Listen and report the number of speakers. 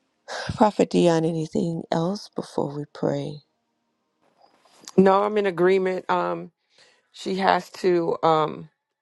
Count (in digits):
2